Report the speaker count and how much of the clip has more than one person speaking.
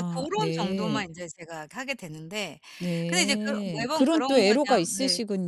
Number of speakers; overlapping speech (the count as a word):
two, about 59%